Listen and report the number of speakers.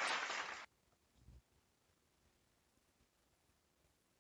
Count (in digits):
0